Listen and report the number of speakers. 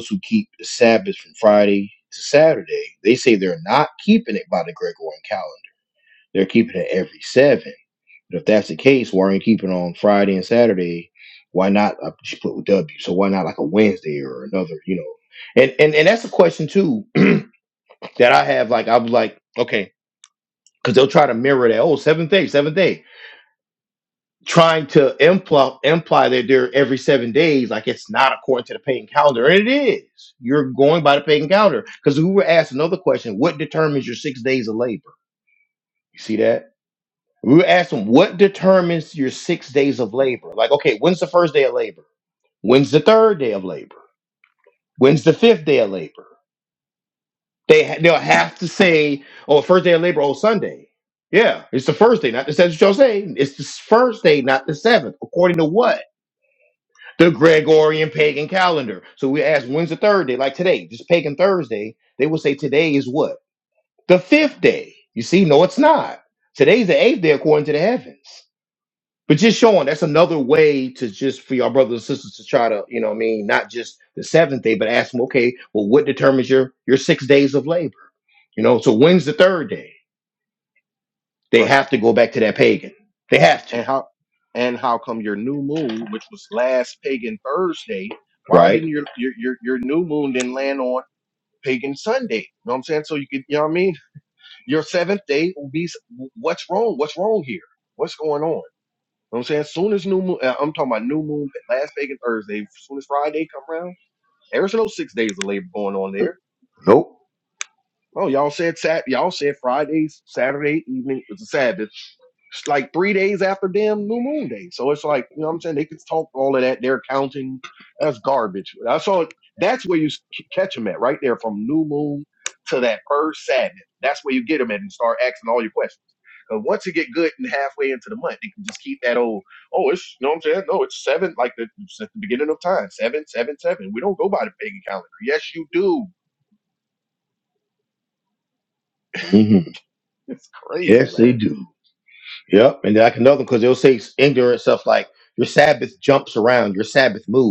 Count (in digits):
2